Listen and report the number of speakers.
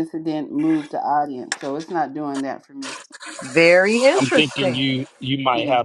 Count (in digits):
3